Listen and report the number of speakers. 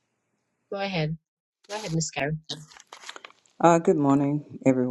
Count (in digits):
2